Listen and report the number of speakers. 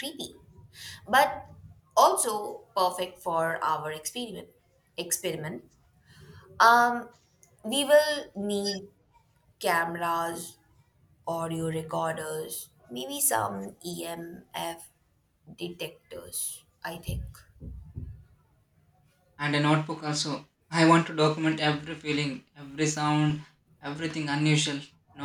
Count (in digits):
2